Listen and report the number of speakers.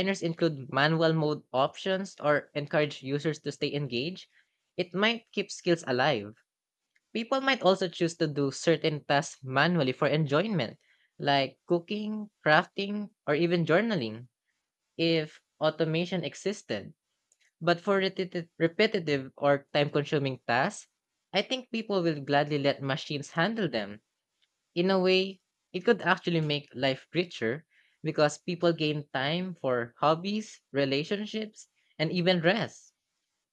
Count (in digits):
1